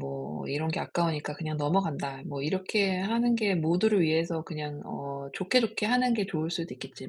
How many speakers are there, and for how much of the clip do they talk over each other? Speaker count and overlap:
one, no overlap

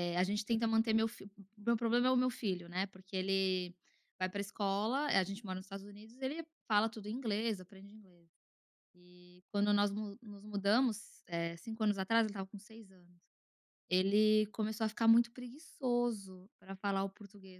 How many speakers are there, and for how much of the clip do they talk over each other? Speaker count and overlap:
one, no overlap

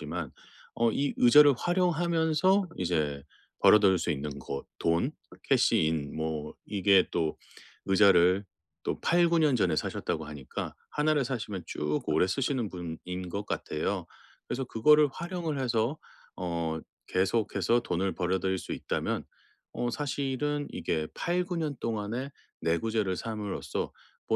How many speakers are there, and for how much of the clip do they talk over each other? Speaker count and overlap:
one, no overlap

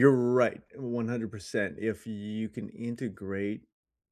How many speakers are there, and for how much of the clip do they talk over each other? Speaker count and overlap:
one, no overlap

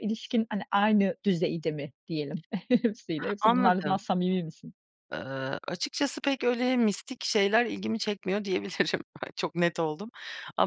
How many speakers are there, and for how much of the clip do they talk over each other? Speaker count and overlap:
two, about 5%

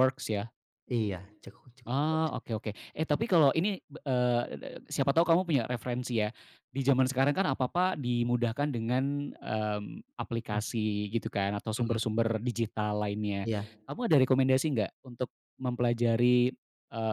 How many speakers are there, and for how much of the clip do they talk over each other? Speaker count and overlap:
two, about 2%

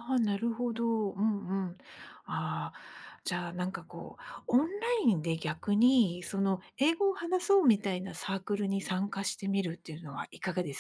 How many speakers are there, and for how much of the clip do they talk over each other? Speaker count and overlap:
one, no overlap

